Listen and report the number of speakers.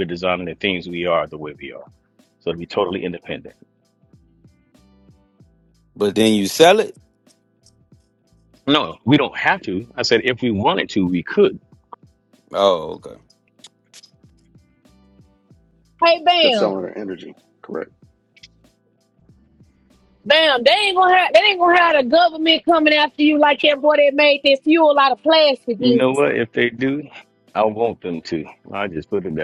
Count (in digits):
4